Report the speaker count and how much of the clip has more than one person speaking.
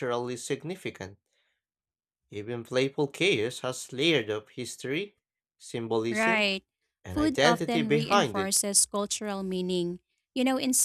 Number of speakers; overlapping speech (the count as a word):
two, about 15%